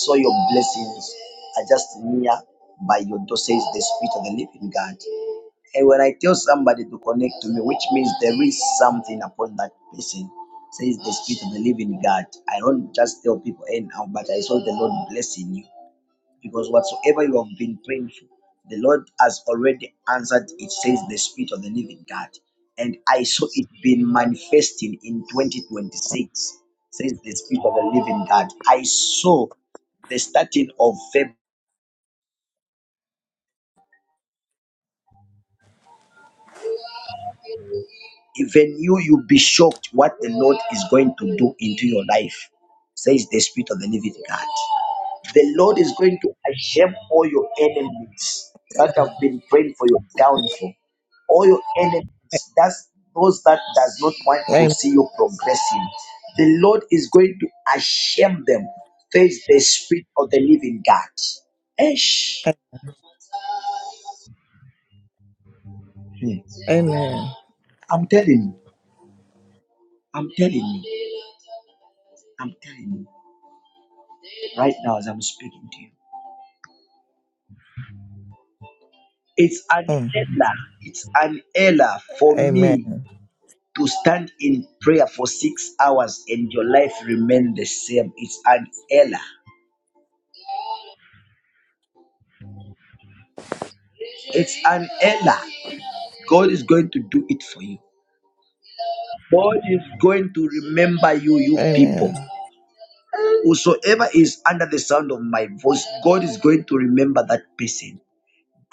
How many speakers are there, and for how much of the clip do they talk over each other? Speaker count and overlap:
2, about 1%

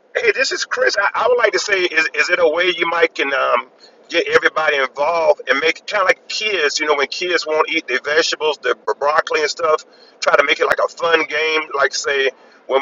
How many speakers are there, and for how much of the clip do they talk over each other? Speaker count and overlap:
1, no overlap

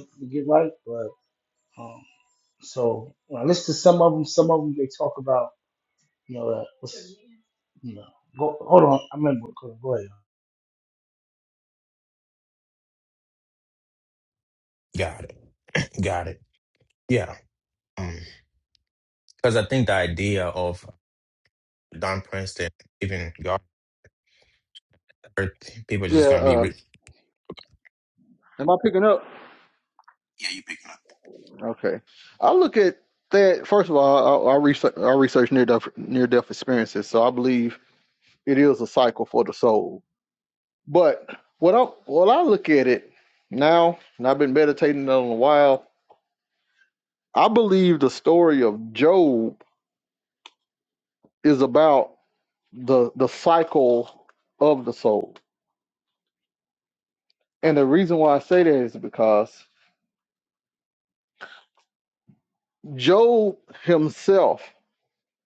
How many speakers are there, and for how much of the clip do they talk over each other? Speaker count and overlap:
3, about 1%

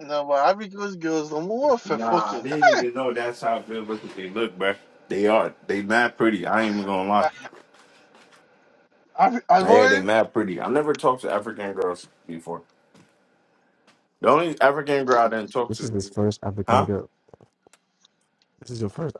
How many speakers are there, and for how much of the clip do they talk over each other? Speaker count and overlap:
3, about 8%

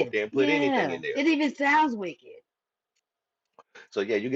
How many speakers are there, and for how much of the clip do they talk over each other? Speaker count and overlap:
2, about 28%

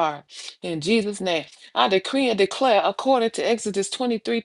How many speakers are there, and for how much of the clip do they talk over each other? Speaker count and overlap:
1, no overlap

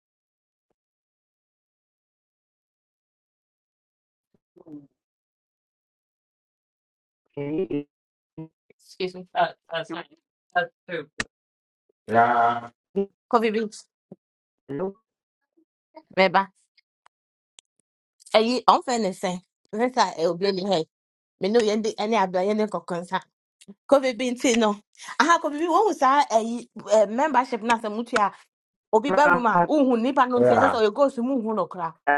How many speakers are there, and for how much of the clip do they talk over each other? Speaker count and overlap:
3, about 3%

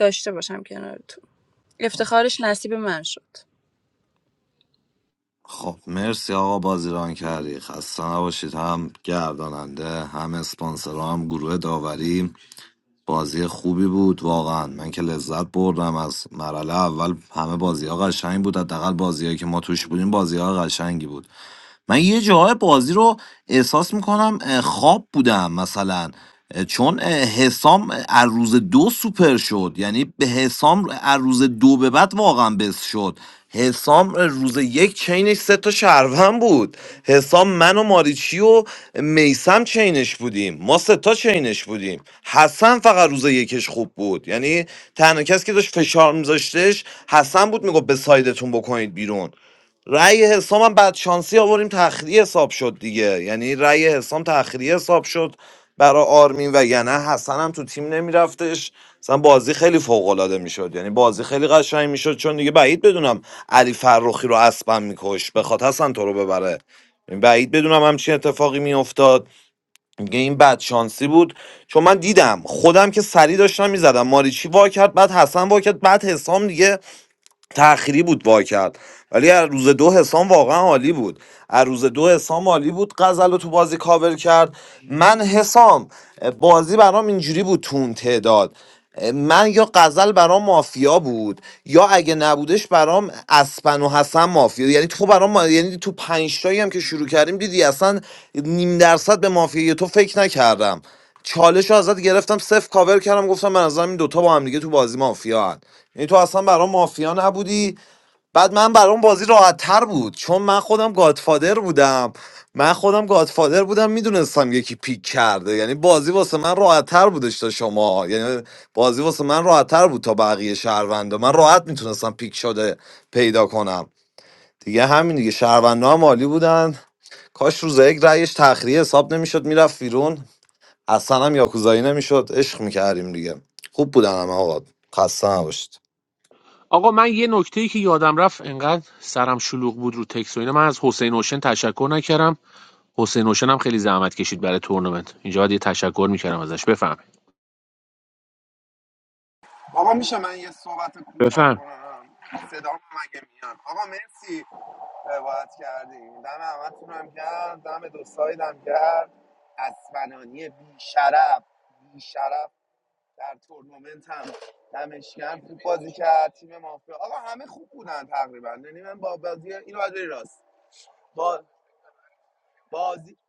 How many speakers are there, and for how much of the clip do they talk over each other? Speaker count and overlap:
4, under 1%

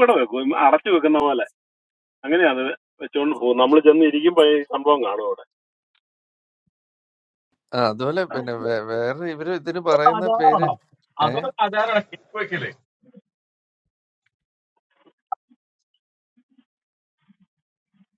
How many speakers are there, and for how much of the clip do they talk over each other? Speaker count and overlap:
3, about 4%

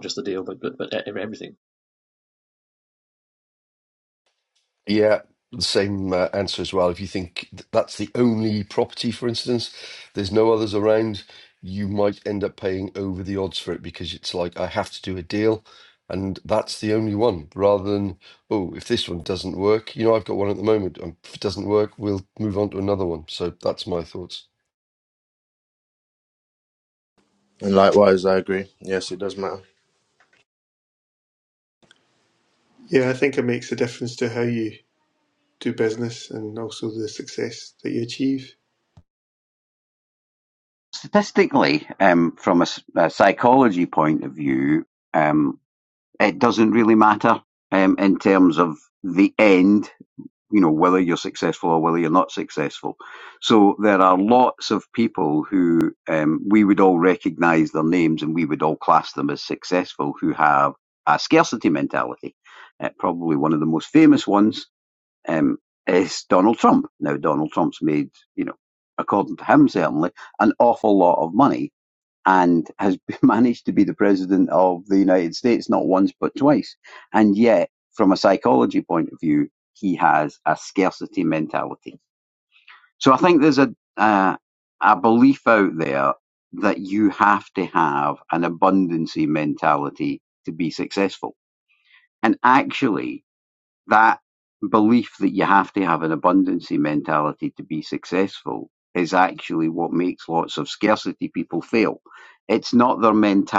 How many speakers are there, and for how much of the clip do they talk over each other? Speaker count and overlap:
5, no overlap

